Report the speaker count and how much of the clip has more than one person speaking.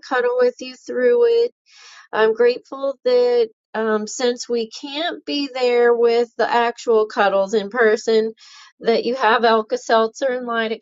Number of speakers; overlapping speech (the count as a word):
one, no overlap